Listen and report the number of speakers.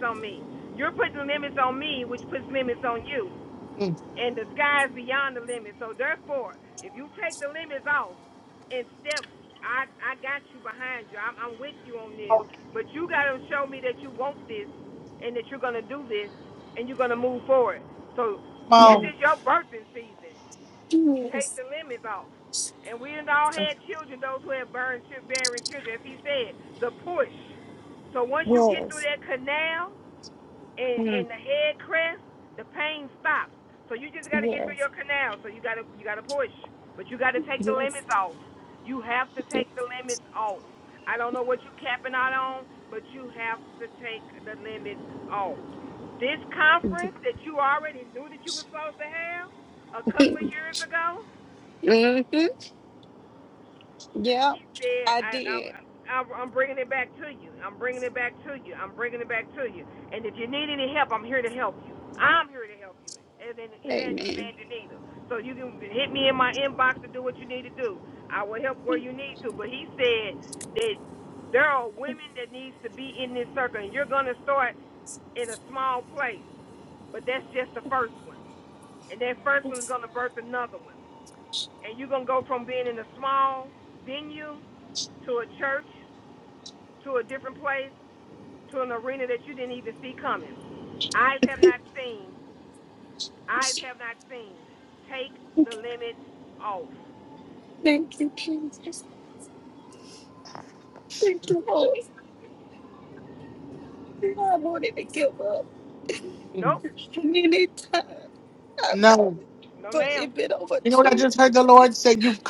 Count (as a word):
three